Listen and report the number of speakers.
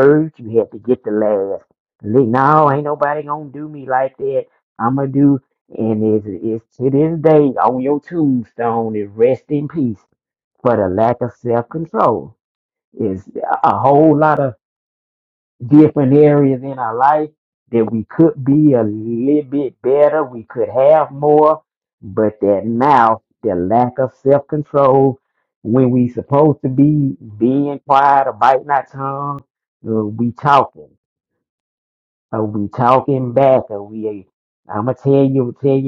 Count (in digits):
1